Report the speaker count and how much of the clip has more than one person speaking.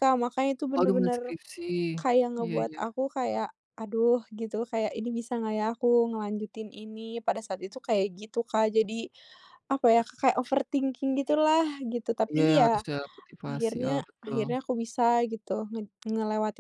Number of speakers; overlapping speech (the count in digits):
2, about 15%